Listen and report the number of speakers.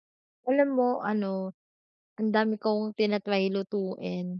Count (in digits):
1